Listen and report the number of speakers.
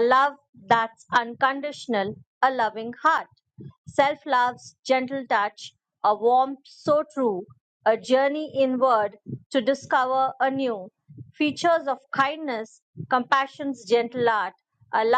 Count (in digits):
1